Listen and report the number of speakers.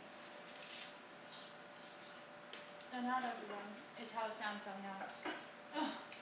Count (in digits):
1